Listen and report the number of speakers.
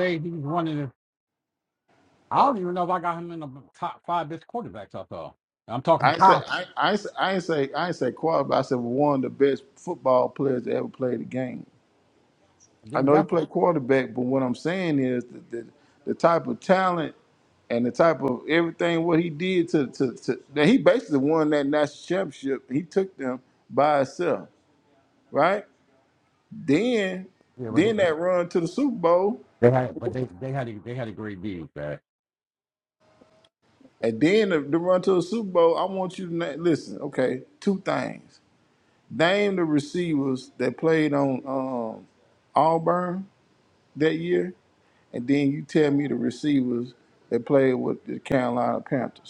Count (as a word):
two